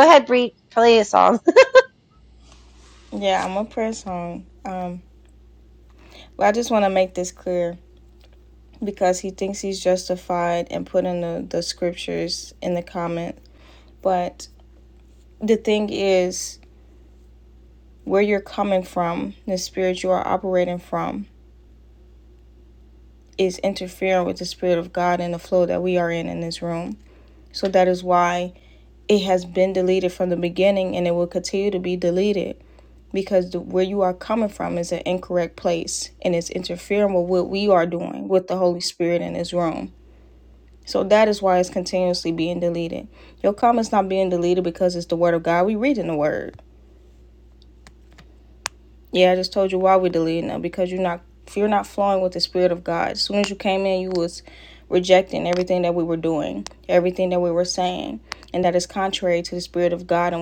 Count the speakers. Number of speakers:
two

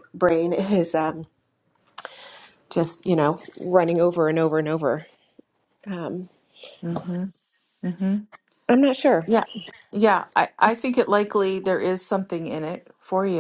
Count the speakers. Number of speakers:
two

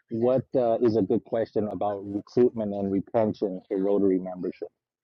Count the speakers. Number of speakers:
one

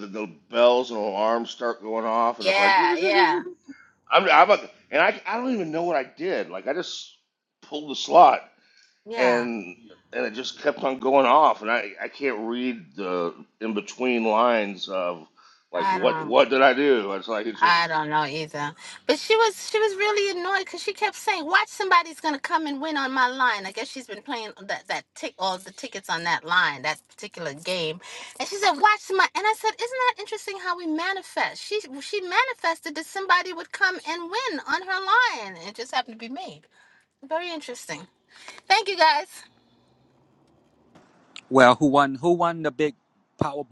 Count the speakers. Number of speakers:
three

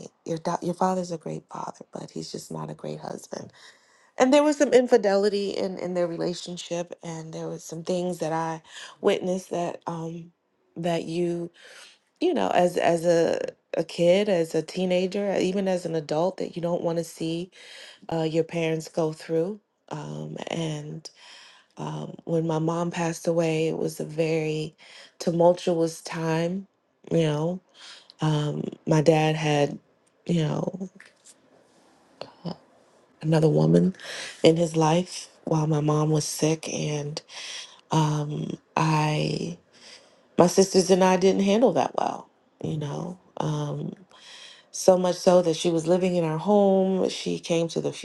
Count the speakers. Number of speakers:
one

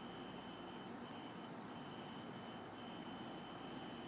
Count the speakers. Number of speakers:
zero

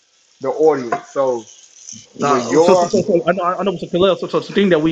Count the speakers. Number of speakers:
two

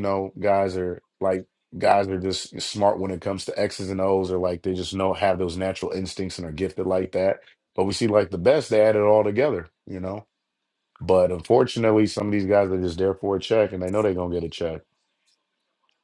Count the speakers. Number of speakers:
one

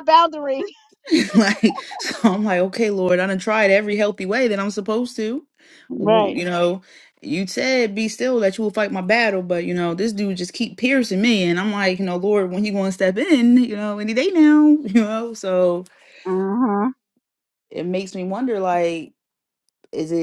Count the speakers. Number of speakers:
two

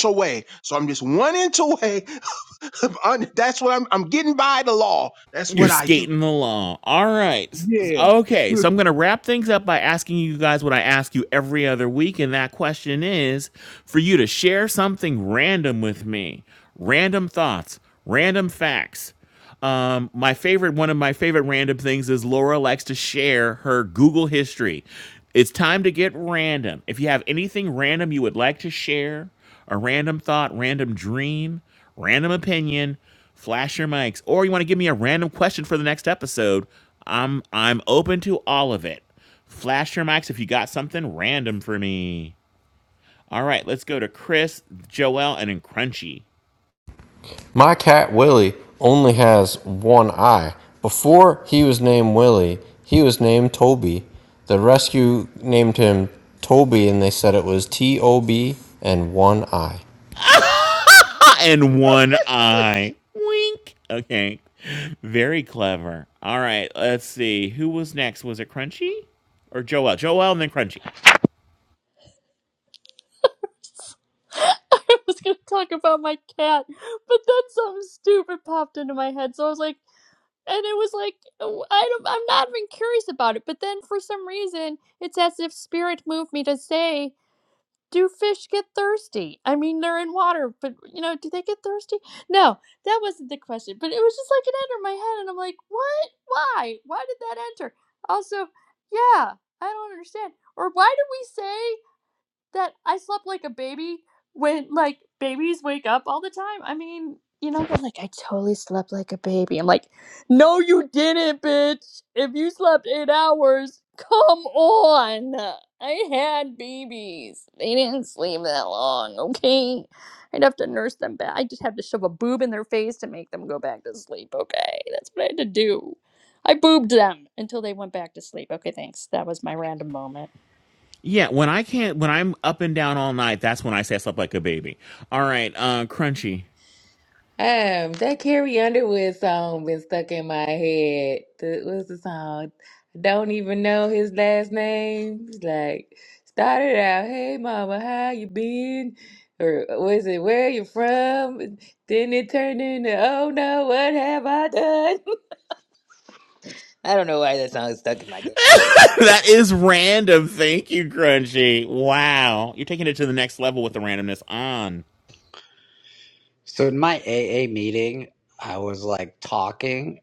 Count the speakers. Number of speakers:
six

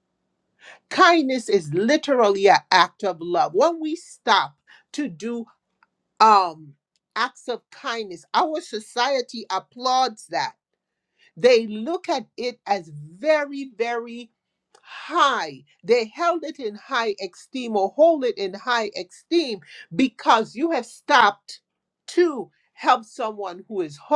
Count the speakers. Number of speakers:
one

